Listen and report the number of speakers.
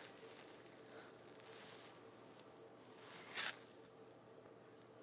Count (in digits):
0